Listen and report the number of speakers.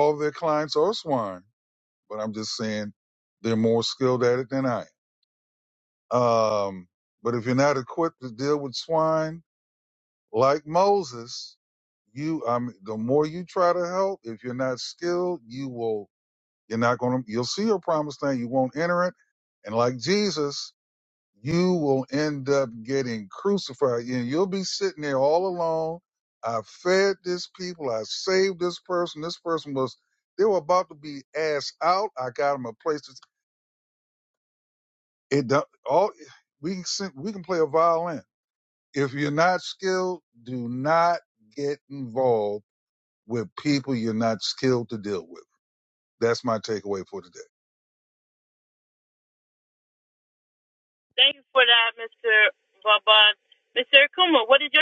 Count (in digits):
2